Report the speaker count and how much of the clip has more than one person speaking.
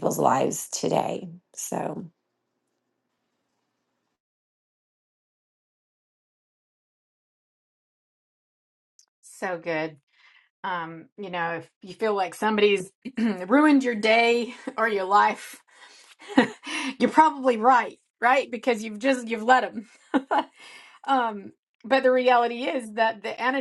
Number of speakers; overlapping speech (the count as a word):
two, no overlap